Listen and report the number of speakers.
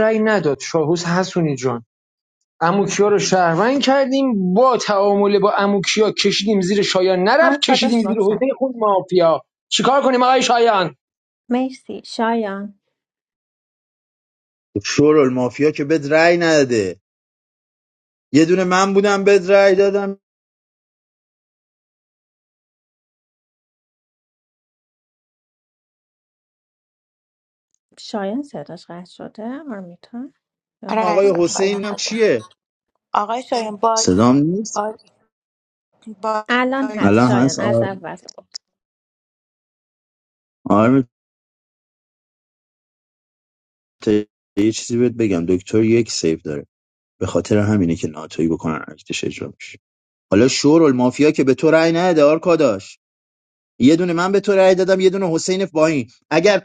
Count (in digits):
4